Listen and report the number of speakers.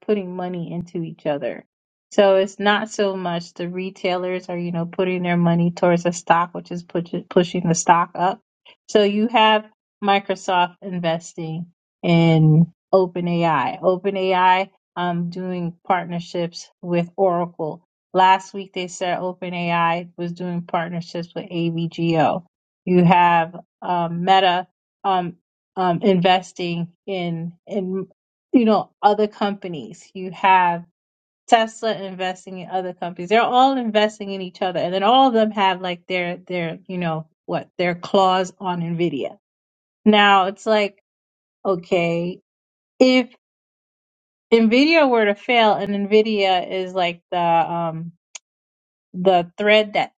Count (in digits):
1